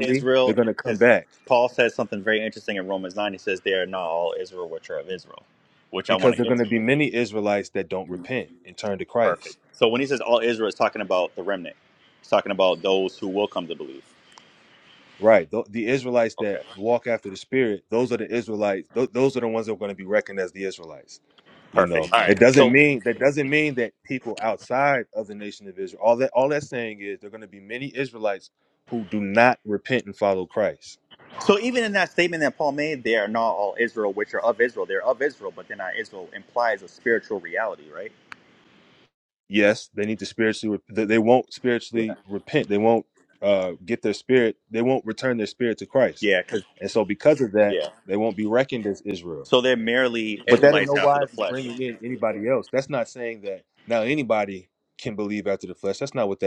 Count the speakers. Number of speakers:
two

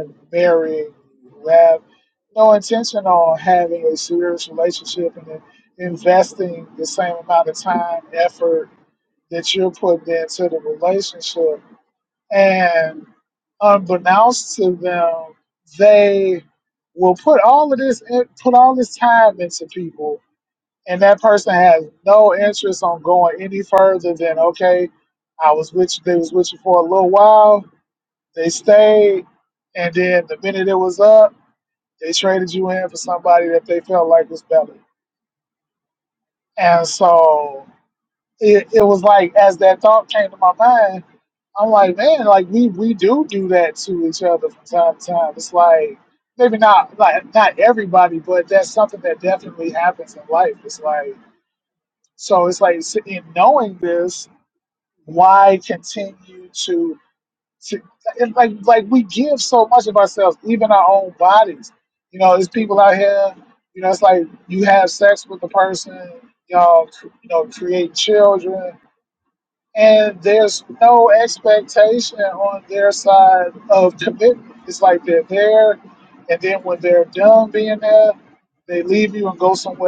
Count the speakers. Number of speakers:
one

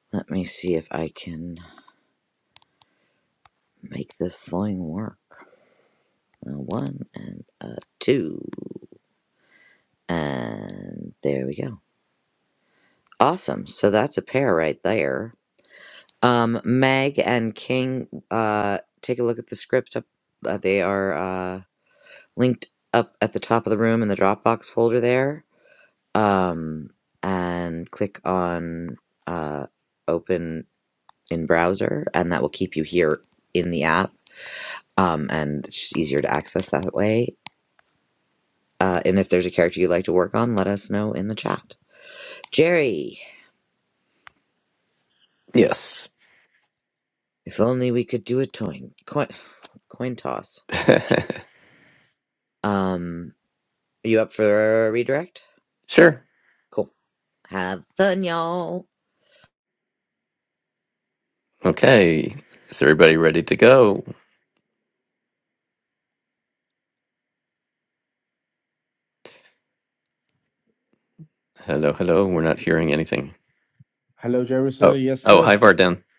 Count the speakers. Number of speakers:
three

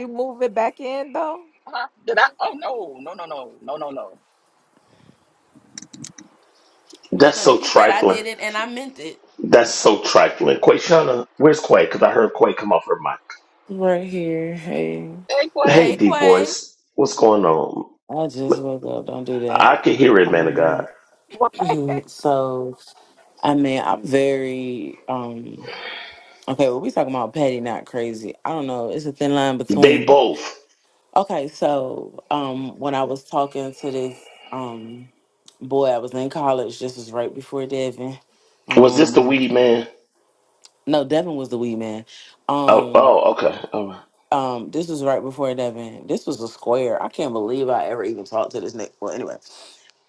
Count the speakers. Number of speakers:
five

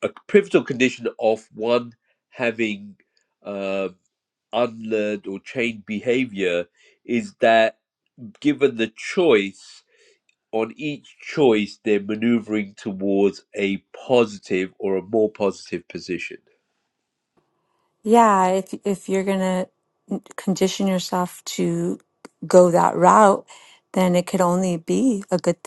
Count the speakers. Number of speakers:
two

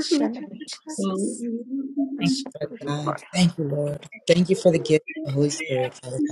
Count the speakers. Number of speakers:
three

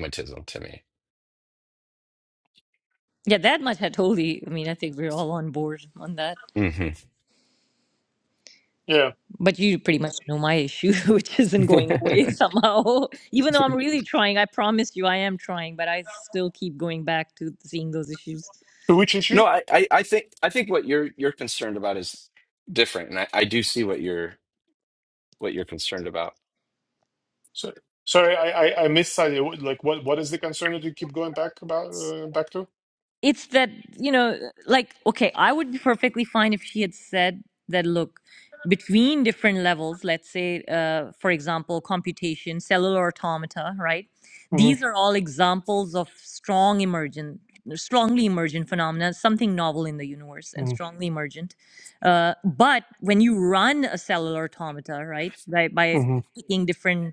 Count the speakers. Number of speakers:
three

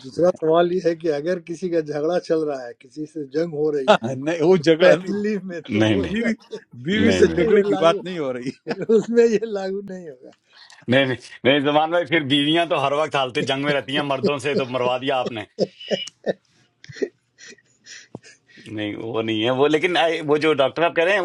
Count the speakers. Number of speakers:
three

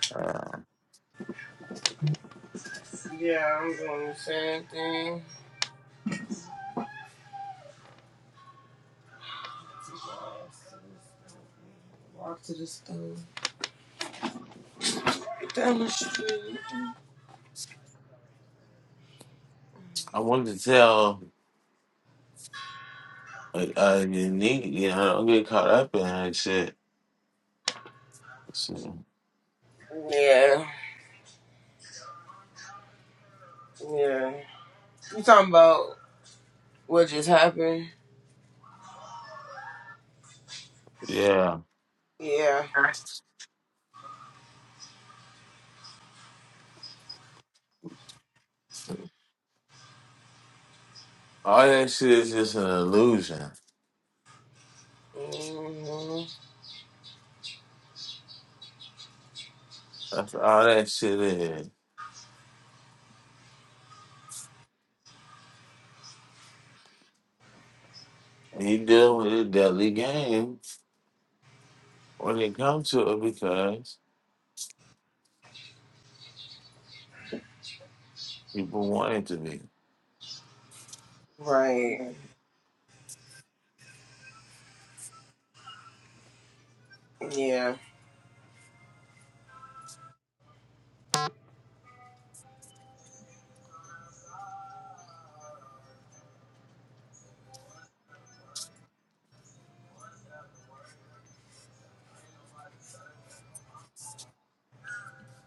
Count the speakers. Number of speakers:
two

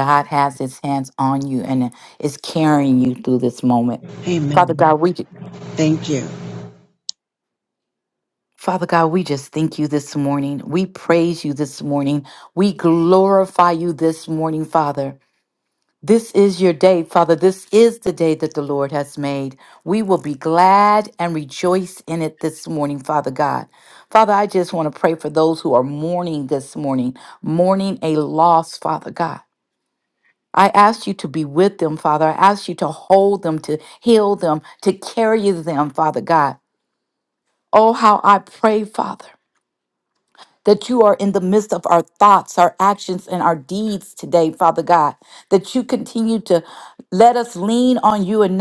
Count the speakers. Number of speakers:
two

